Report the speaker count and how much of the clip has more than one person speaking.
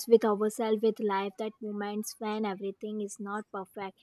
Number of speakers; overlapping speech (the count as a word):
one, no overlap